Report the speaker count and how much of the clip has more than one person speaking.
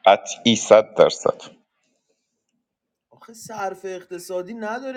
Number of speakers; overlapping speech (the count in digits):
2, no overlap